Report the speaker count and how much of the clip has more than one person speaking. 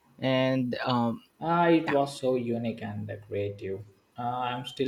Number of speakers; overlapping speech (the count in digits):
2, about 2%